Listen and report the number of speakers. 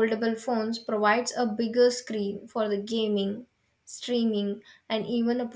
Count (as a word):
one